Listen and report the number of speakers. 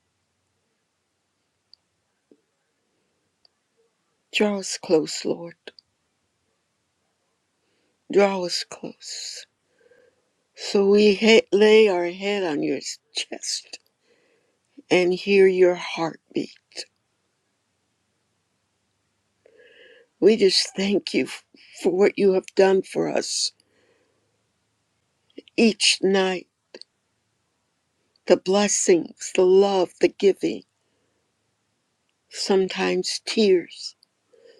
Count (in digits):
1